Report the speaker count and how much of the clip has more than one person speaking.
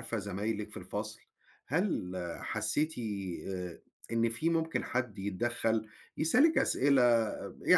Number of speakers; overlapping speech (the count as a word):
one, no overlap